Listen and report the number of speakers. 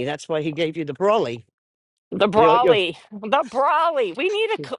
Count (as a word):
two